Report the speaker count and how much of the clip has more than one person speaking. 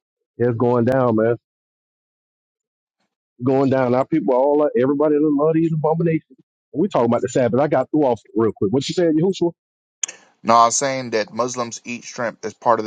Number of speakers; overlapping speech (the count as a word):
two, no overlap